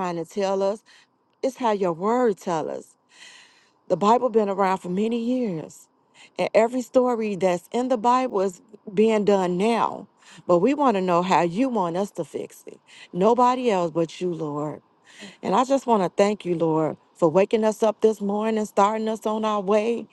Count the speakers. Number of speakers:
1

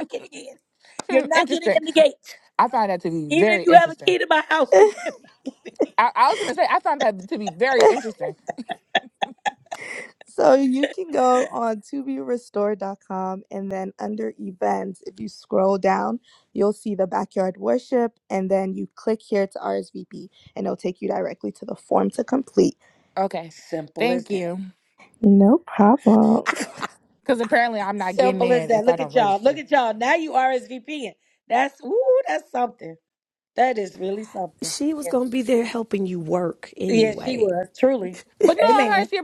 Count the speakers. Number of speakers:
4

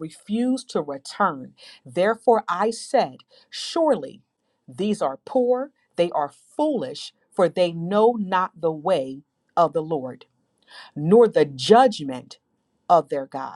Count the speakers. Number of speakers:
1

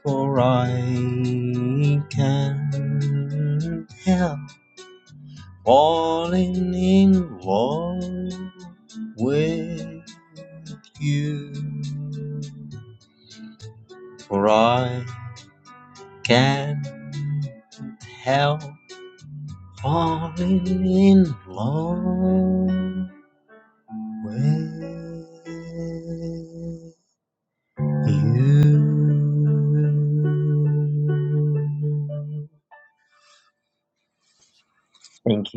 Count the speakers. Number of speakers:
1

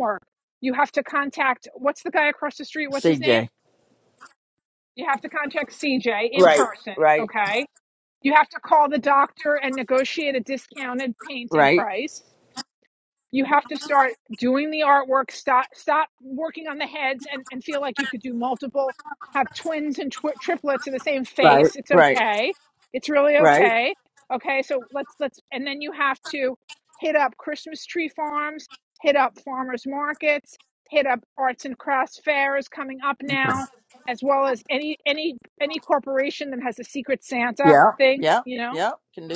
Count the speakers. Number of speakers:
2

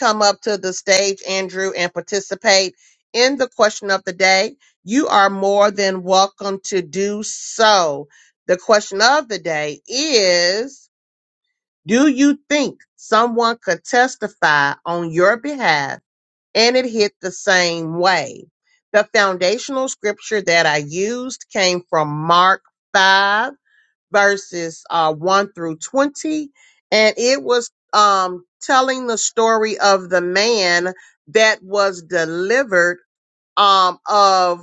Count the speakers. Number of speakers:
1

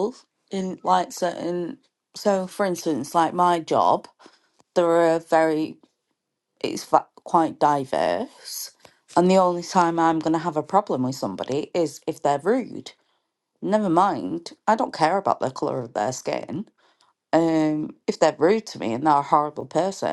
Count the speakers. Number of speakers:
1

